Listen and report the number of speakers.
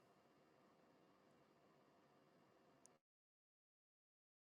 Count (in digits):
0